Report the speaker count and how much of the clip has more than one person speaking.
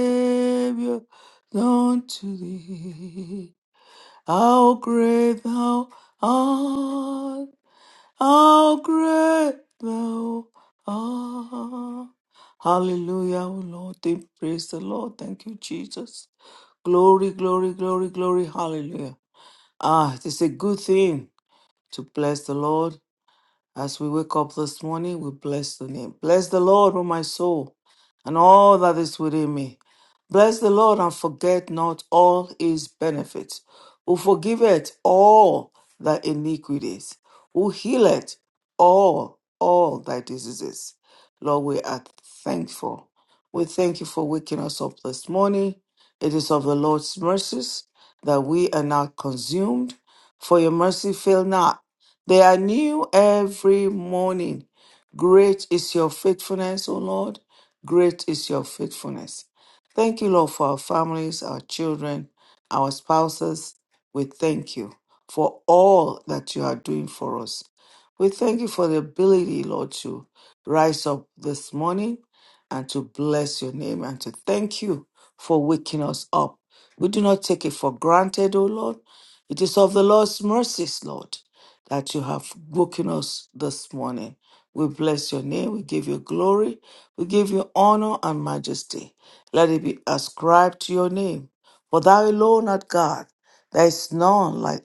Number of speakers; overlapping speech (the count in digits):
1, no overlap